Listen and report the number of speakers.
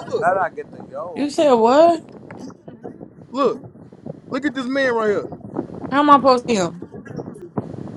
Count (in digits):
3